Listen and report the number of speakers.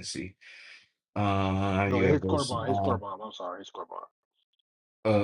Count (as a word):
two